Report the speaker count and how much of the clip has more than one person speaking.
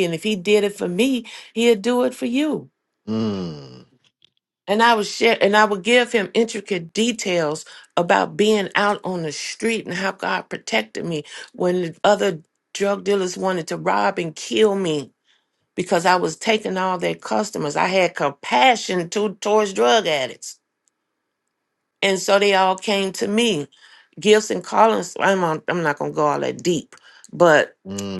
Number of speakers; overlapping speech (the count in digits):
2, no overlap